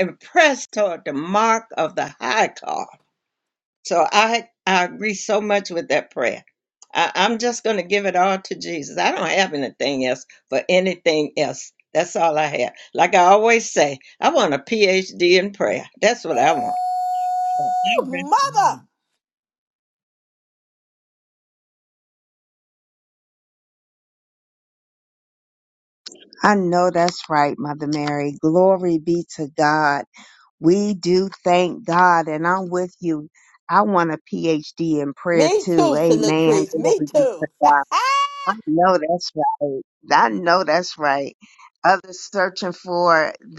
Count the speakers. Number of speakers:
3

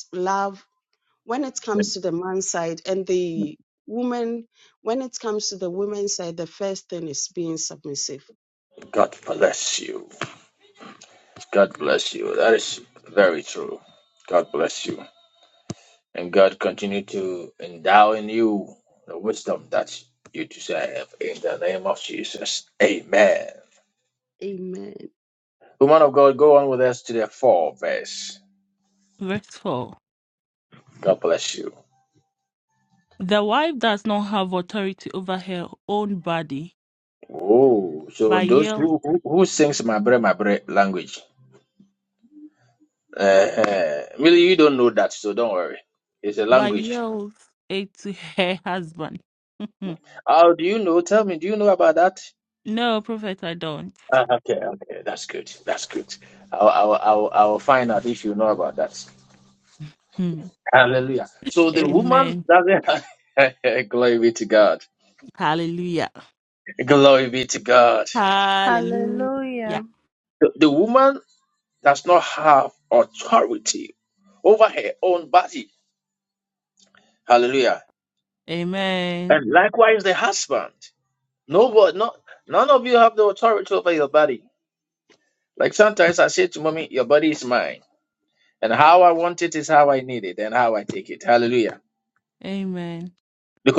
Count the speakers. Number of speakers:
4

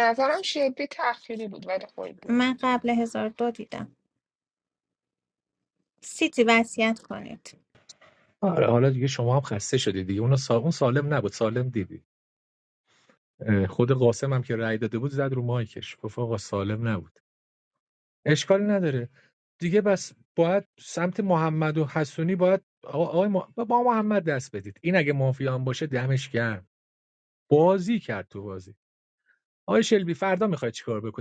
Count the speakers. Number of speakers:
3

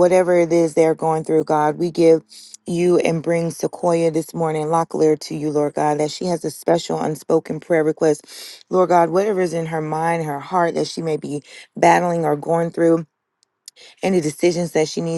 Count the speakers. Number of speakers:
1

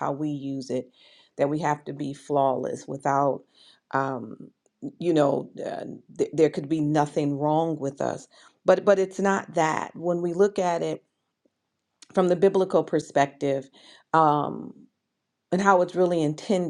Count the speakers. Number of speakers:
1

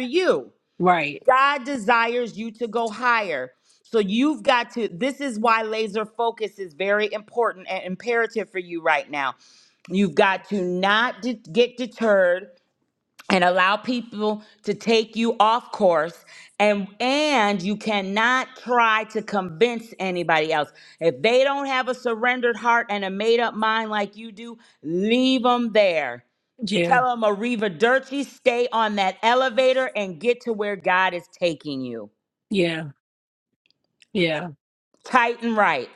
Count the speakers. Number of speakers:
2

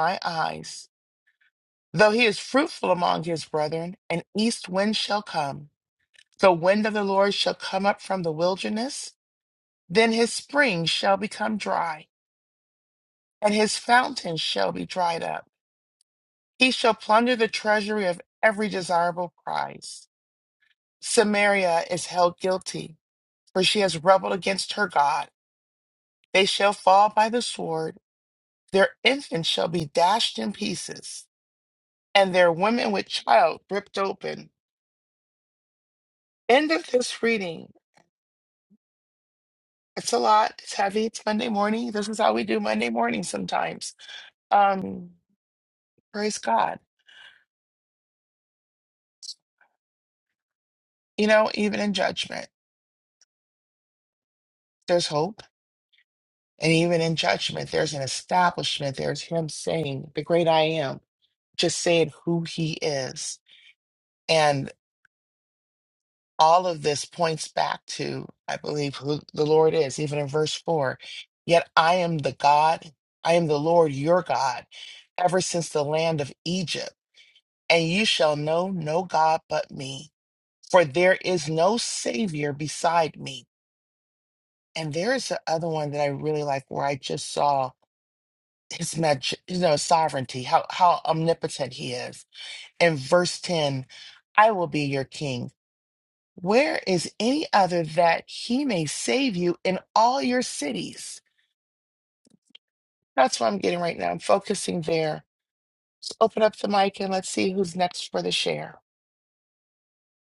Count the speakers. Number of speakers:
1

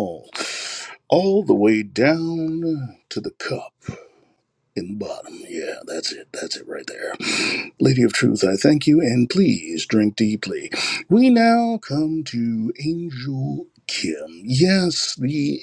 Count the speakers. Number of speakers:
1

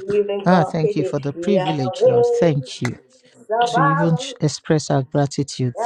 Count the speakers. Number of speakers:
2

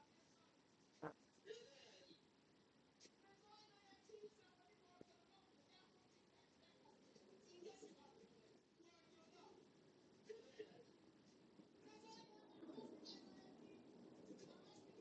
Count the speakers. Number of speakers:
0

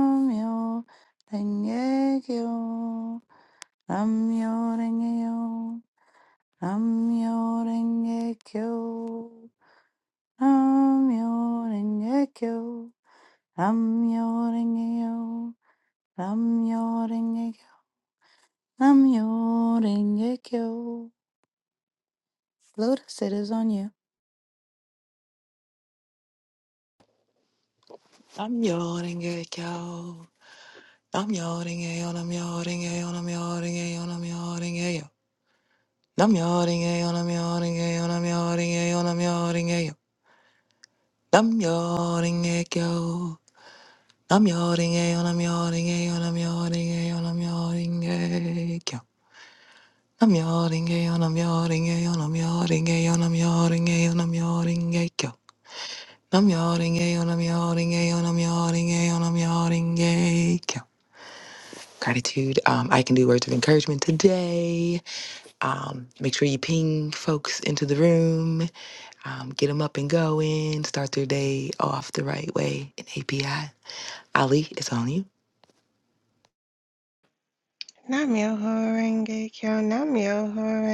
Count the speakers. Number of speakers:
3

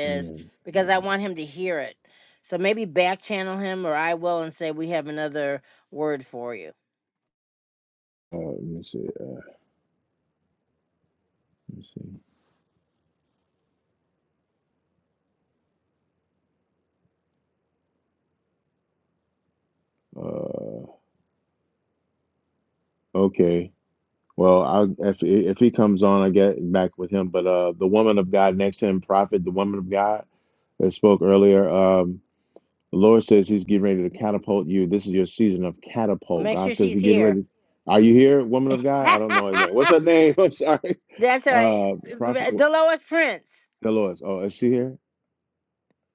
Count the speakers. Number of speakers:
2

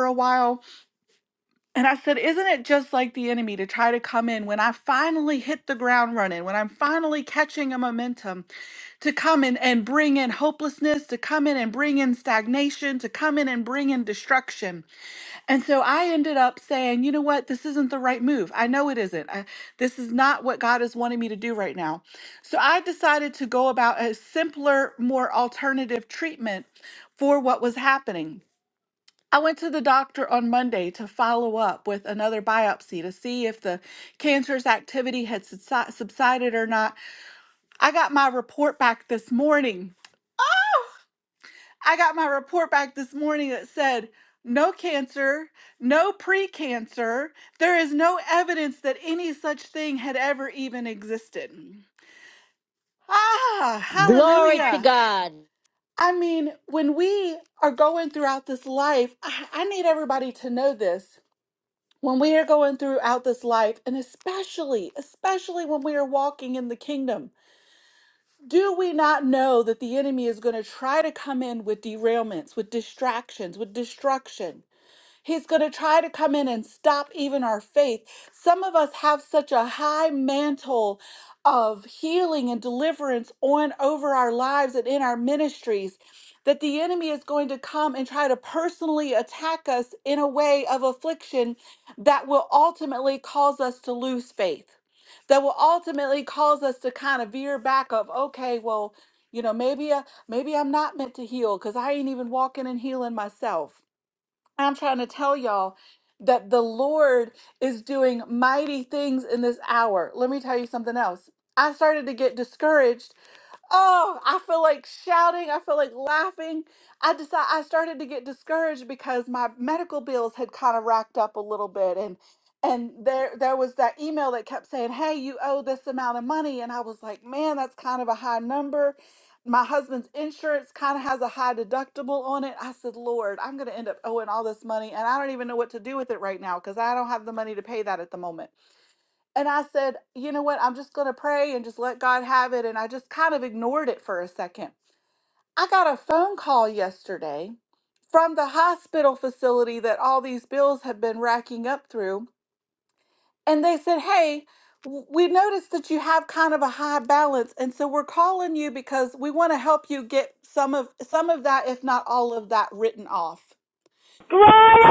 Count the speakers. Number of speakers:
2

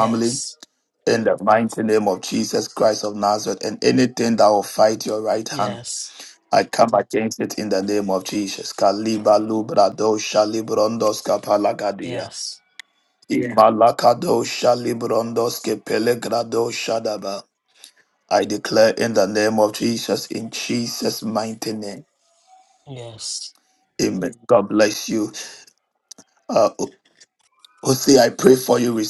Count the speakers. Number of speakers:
2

